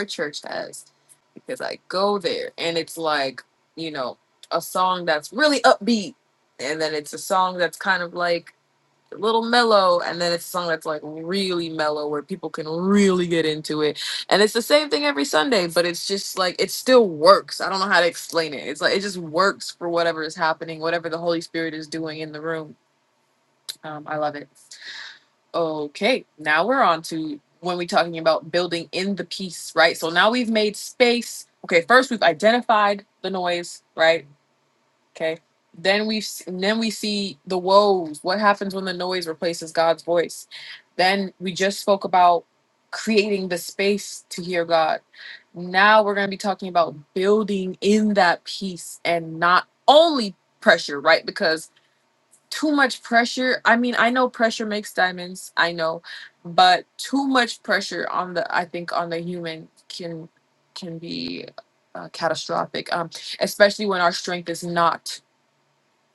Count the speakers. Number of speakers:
1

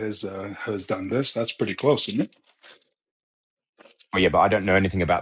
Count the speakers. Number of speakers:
2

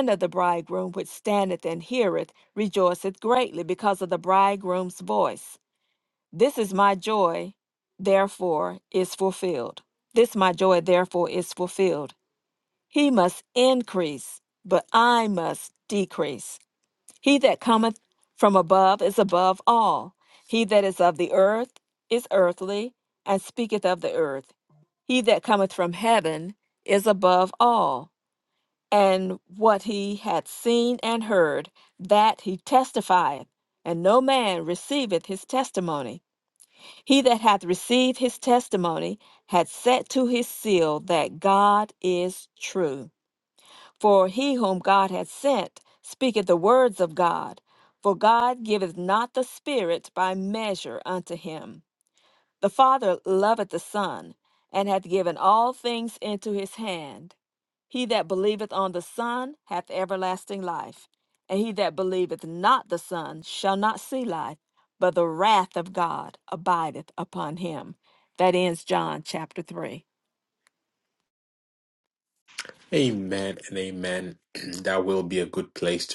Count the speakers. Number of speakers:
2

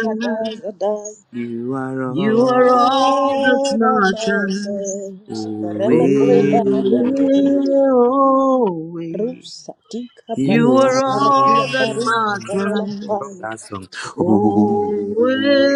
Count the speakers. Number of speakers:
3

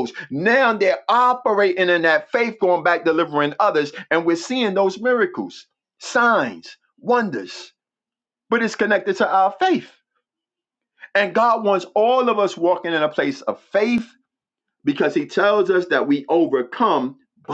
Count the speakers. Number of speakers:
1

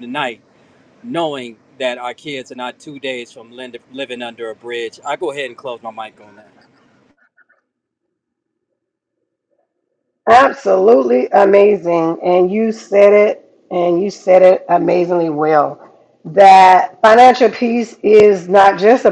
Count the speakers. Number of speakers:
2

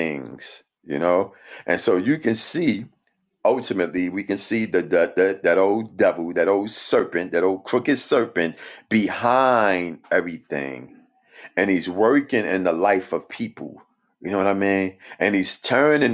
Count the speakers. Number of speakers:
1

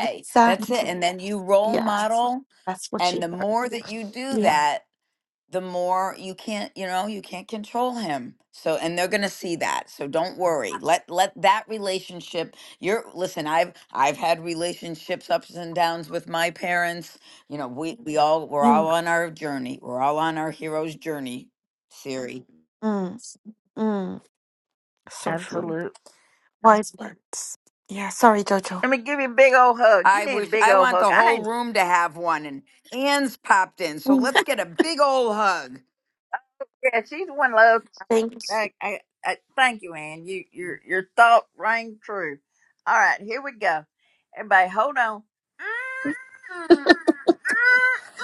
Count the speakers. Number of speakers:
3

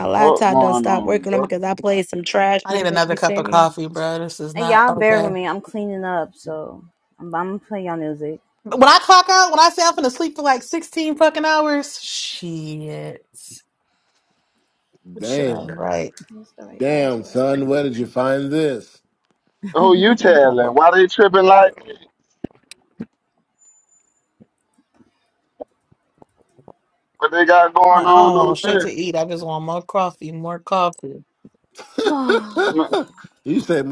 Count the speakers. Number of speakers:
5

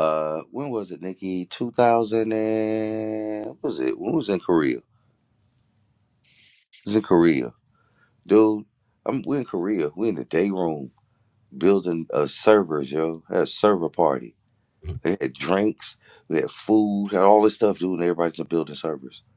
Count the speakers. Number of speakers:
1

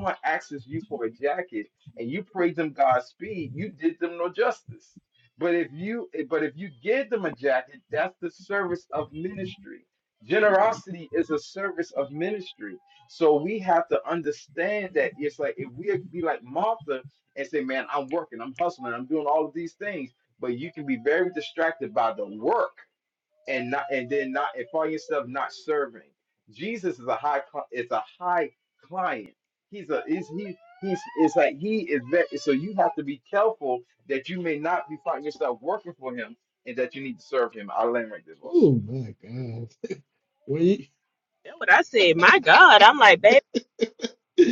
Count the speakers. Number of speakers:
3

